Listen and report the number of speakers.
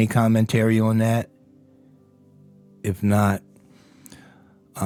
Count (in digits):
1